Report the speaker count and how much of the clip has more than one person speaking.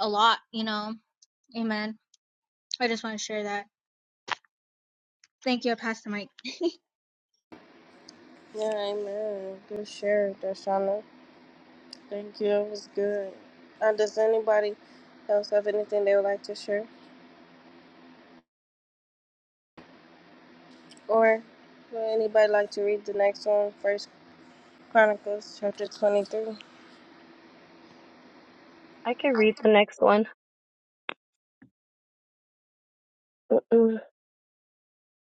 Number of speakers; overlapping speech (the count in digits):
3, no overlap